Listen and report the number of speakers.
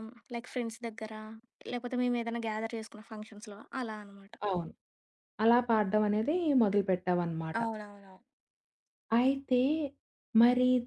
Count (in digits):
2